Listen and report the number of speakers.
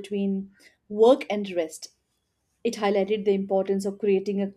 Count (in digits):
1